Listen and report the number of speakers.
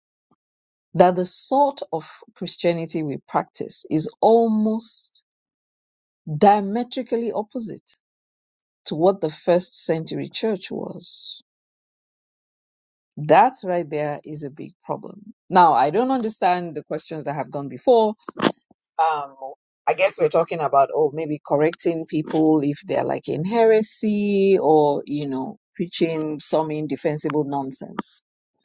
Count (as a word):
one